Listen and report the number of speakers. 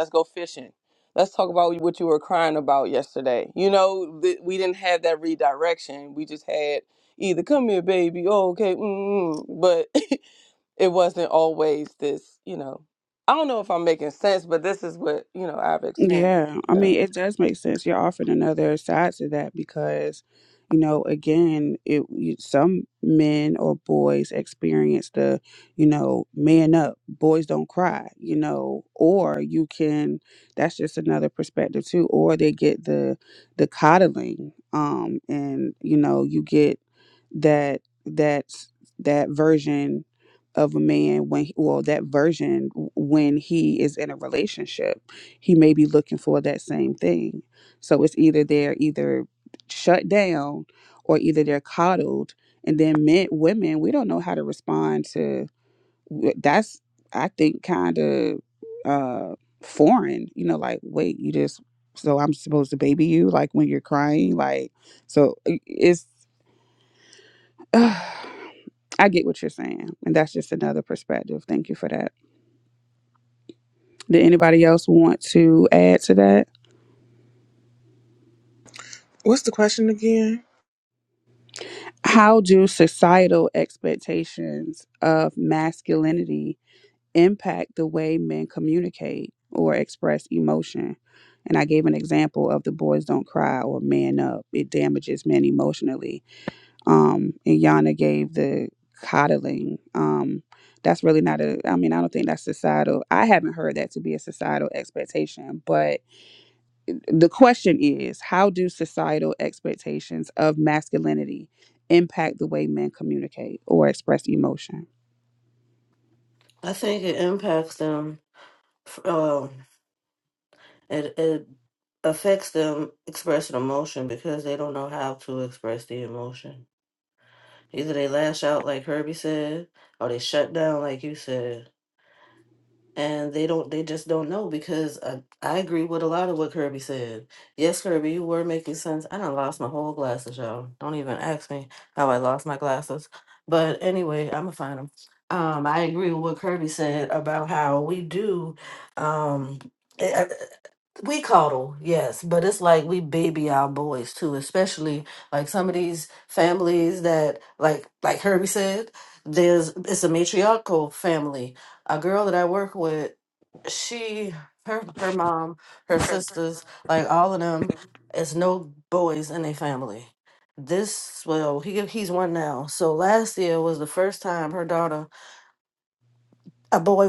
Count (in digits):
4